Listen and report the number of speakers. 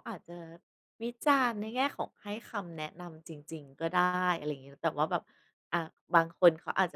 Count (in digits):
1